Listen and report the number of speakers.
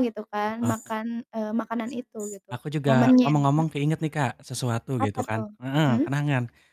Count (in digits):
2